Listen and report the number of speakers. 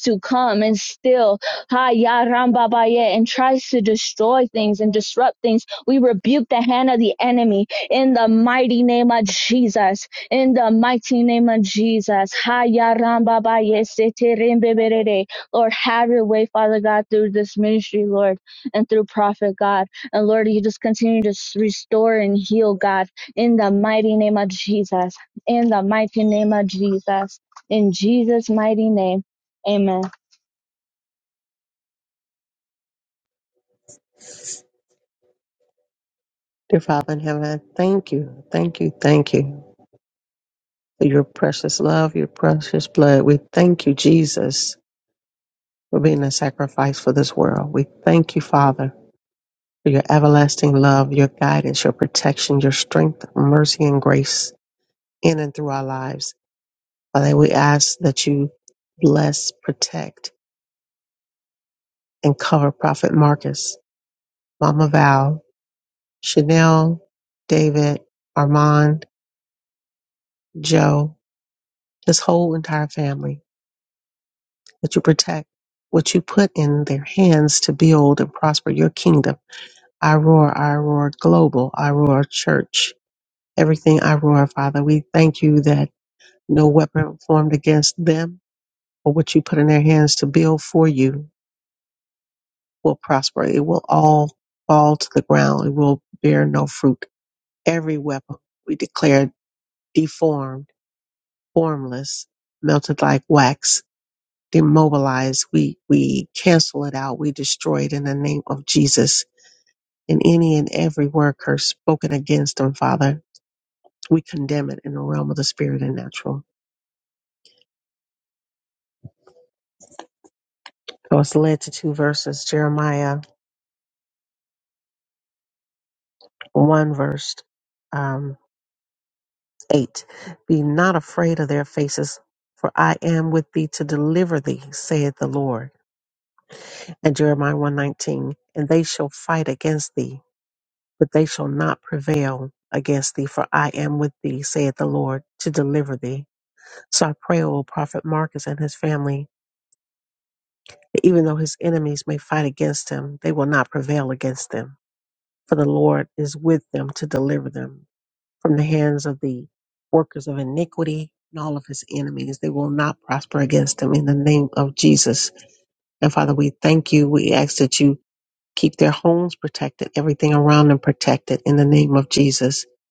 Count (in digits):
2